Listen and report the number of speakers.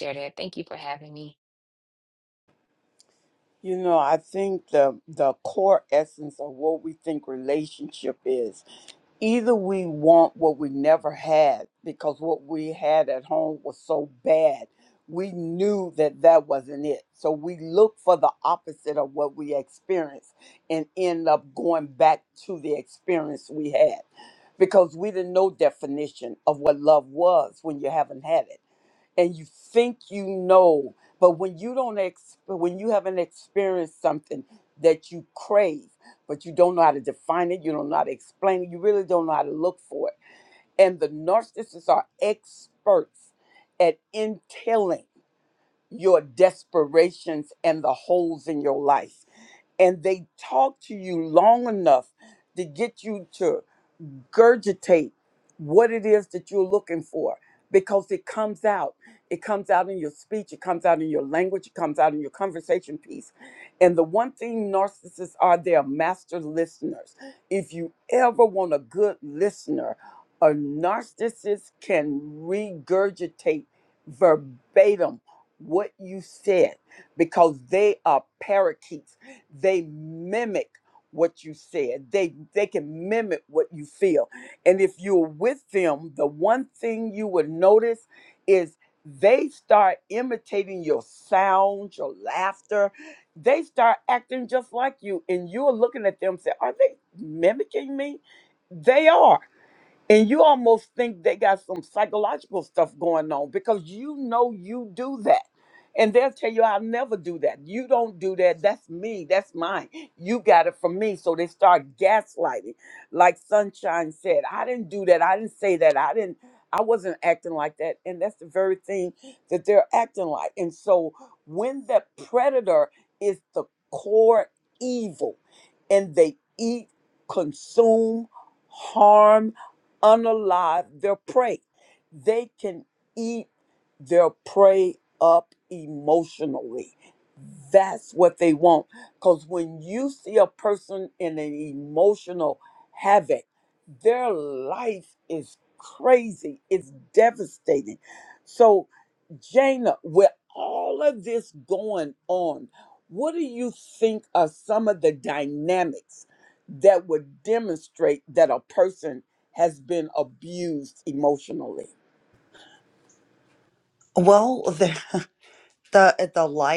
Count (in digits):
3